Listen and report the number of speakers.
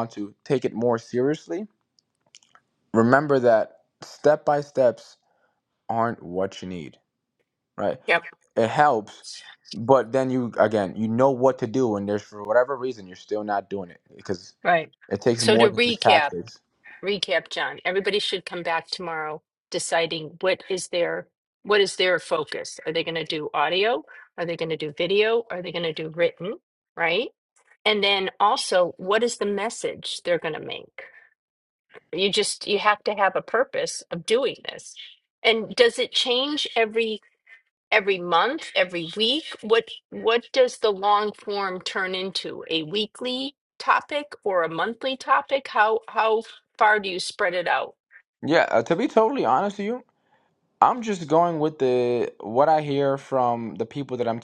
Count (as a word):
two